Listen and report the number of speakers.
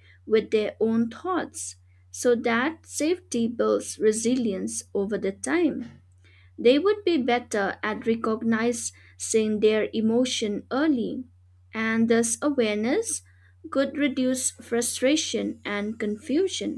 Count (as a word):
one